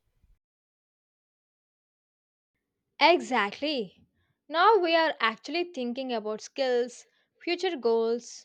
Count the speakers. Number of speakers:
1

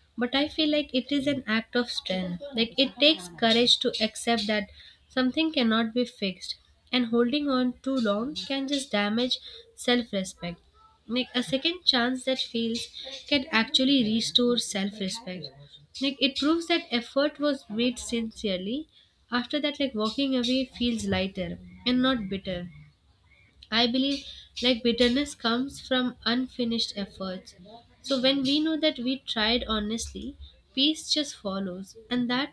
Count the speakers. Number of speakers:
1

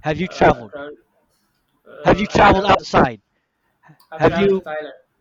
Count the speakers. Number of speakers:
2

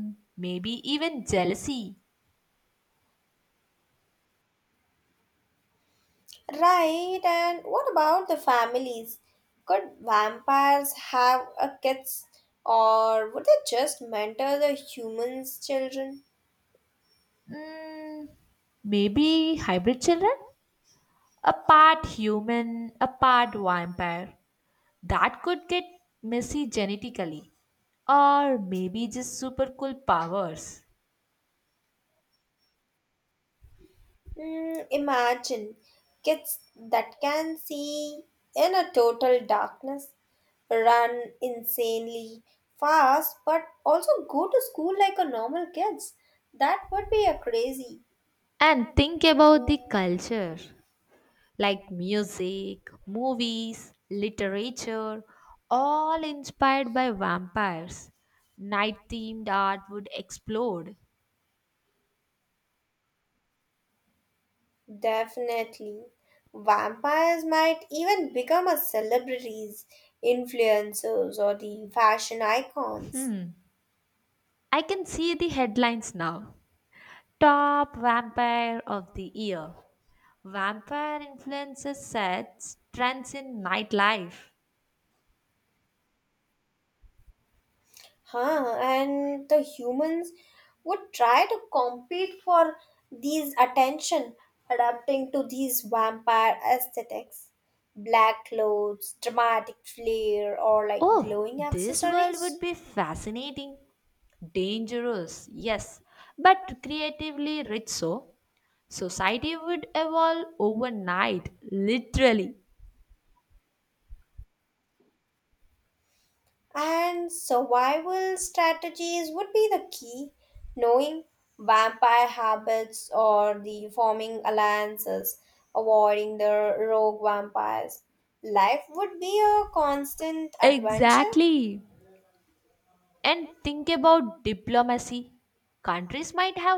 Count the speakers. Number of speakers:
2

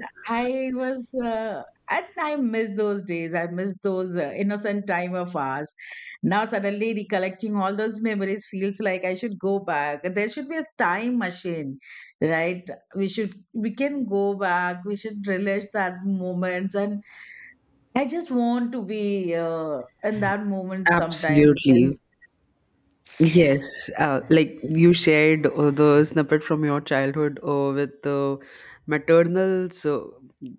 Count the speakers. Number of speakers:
2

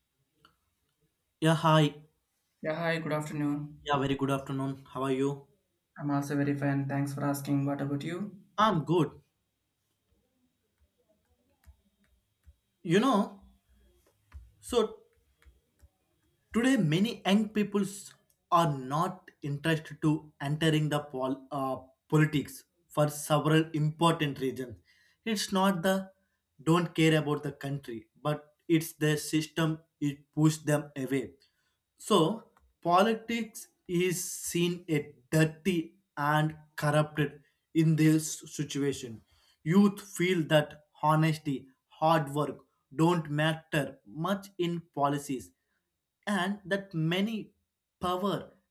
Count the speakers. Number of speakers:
2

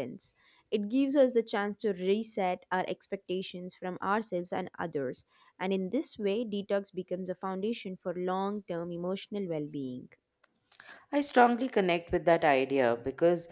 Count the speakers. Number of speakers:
2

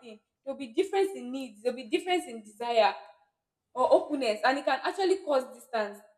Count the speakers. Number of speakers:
1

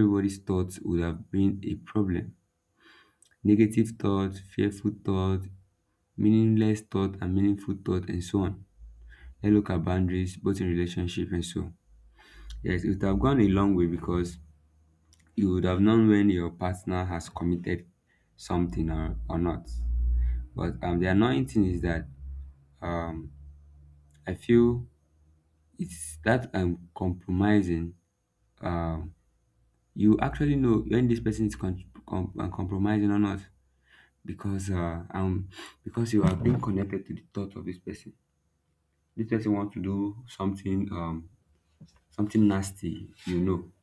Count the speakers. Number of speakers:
1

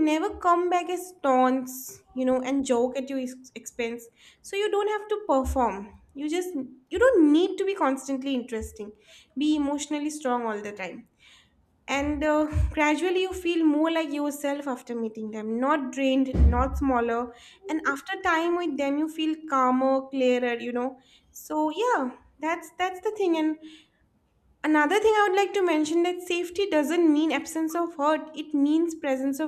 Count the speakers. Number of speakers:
1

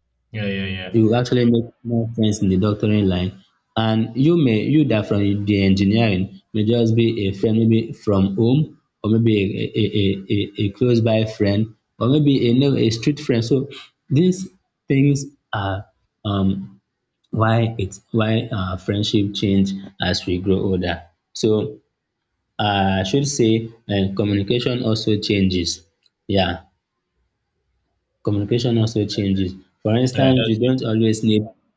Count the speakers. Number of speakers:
2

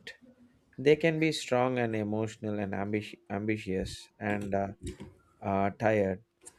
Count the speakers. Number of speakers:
1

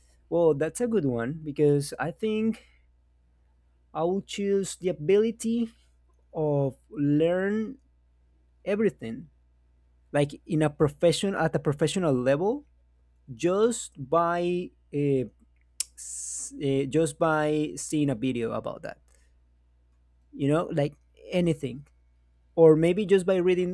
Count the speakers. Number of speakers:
1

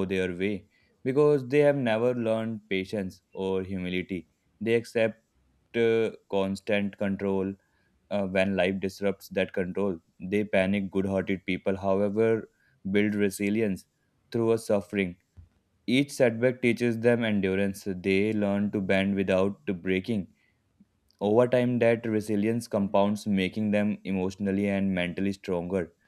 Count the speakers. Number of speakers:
1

